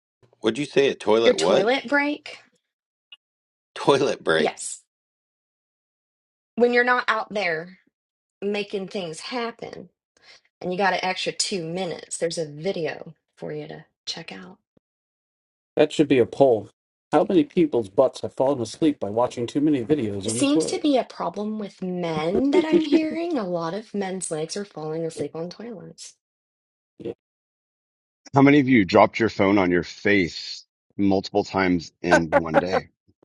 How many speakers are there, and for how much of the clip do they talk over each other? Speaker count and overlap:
4, about 4%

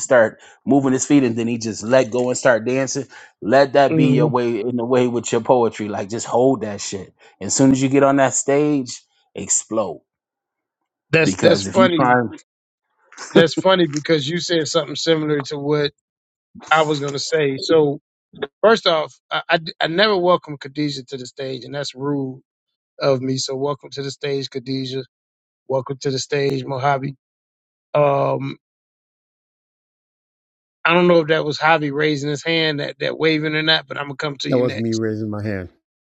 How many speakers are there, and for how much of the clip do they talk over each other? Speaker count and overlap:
3, about 5%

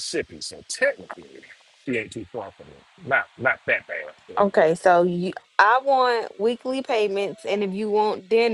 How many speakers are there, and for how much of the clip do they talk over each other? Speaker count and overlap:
2, under 1%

